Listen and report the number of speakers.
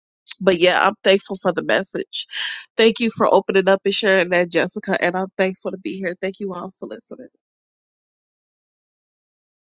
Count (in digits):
1